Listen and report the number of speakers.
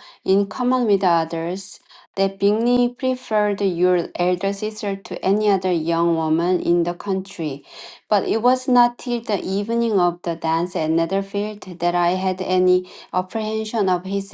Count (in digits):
1